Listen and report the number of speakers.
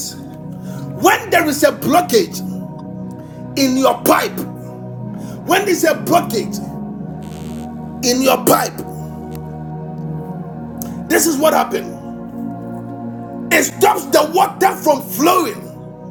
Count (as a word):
one